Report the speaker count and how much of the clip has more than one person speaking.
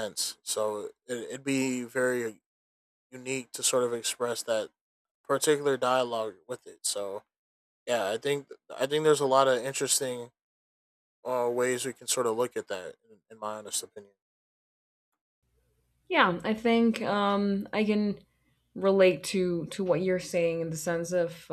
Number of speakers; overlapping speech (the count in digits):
2, no overlap